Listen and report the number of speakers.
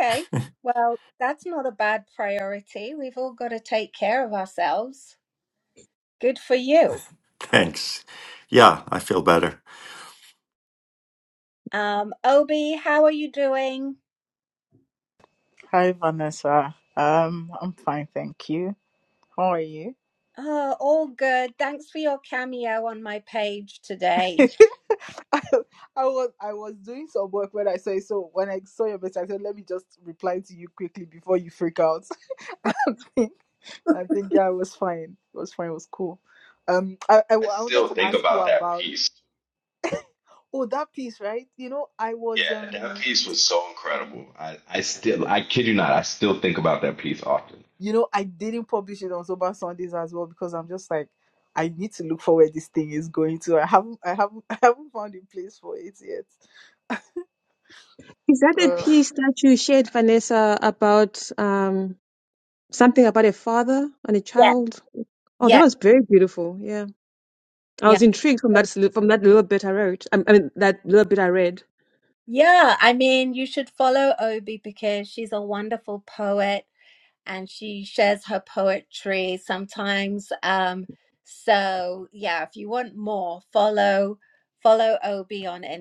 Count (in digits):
5